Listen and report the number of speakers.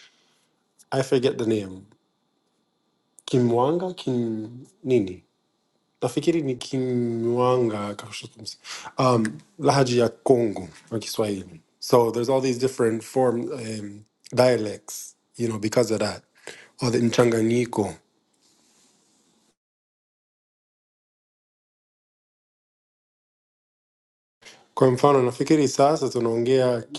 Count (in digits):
1